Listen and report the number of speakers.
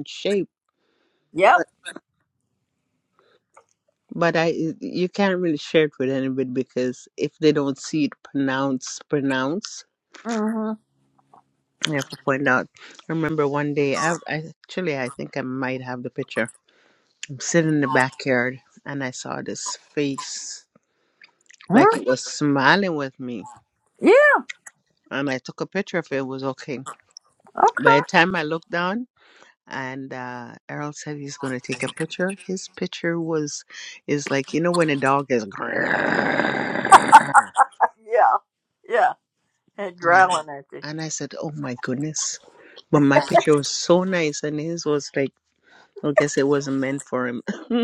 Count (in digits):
2